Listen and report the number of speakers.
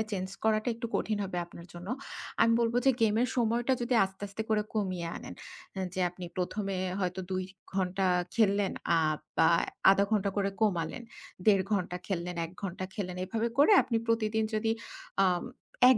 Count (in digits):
1